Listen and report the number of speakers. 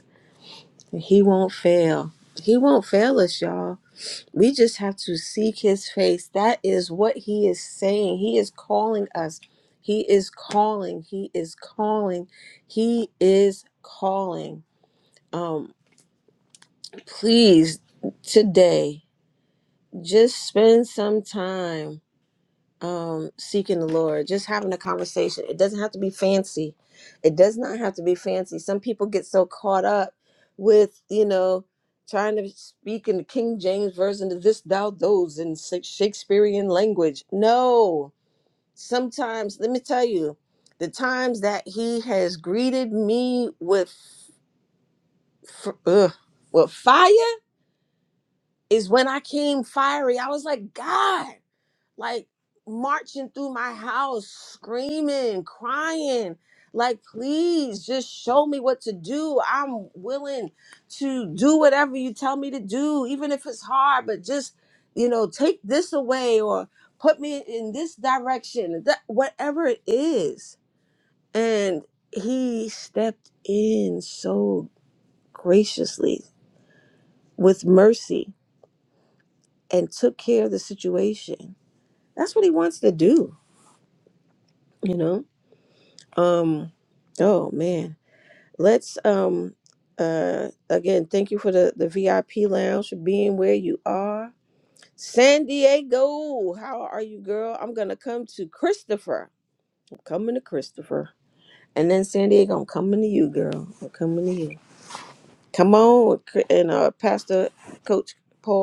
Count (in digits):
1